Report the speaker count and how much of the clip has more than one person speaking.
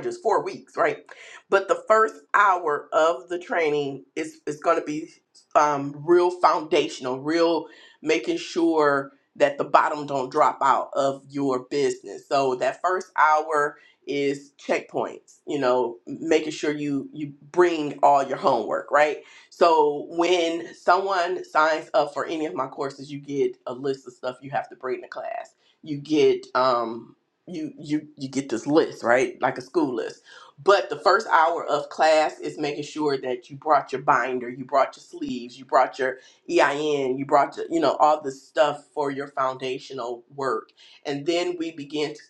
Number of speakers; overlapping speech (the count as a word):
one, no overlap